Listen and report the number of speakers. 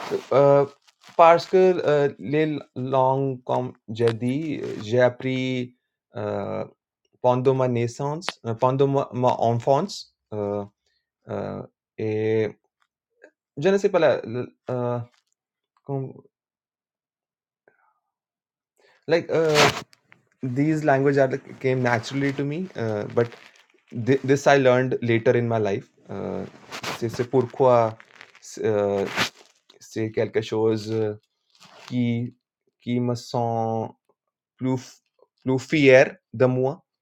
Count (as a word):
one